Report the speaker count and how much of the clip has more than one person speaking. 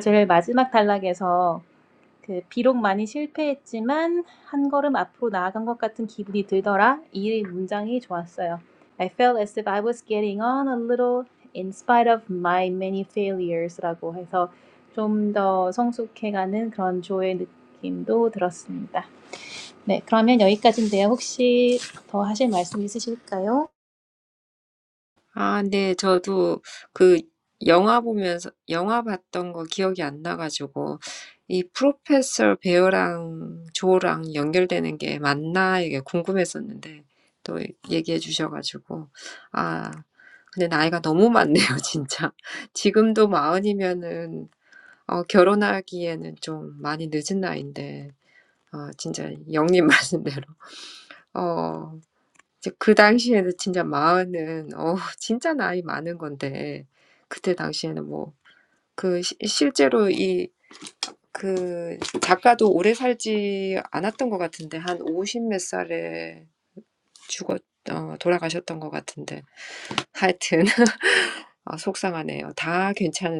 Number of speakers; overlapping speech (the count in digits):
2, no overlap